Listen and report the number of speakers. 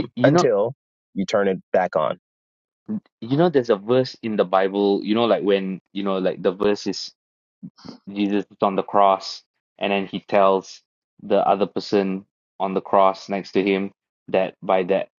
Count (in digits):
2